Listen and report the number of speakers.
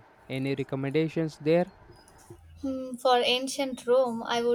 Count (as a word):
two